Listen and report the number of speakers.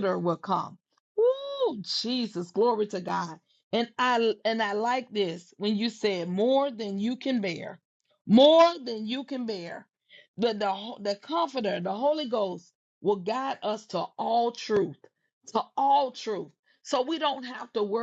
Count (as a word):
one